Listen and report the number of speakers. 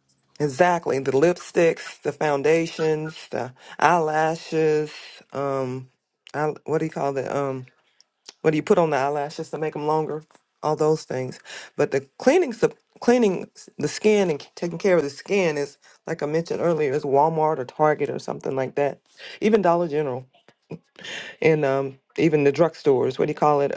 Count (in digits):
1